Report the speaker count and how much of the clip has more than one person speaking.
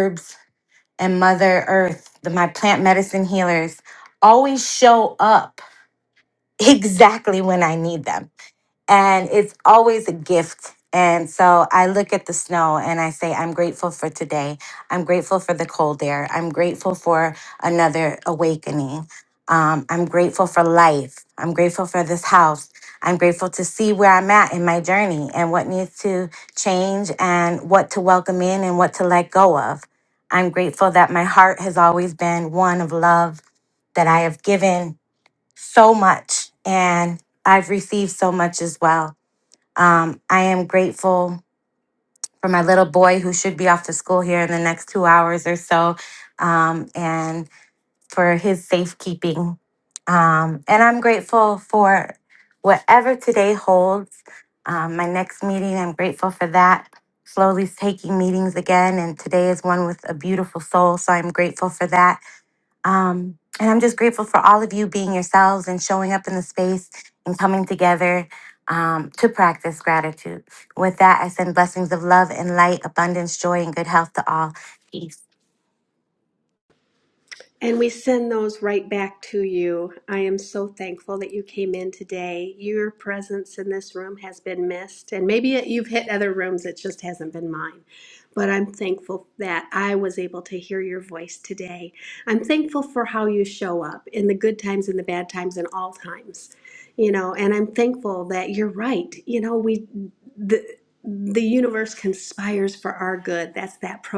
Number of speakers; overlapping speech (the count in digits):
2, no overlap